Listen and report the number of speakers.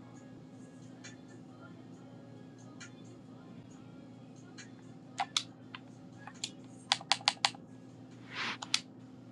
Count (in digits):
0